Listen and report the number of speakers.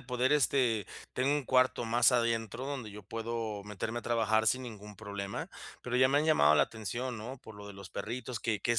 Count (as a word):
one